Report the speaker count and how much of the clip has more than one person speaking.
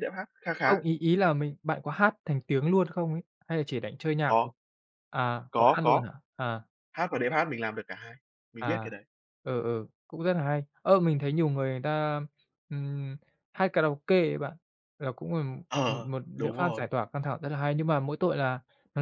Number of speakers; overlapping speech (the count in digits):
2, about 10%